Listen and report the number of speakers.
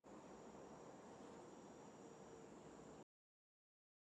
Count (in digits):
0